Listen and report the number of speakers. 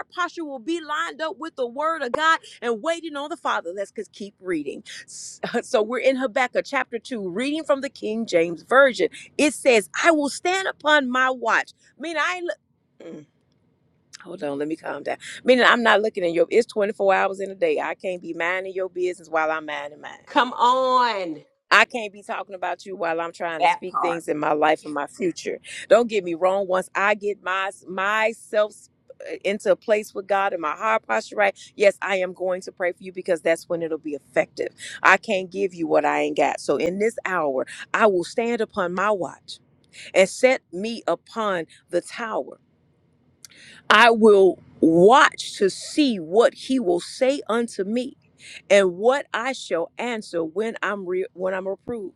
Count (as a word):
two